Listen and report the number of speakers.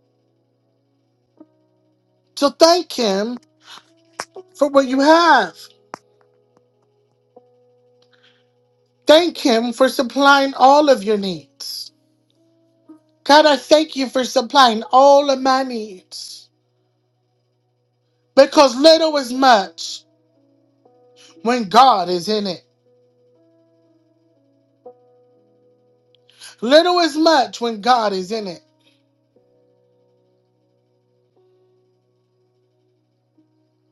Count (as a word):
one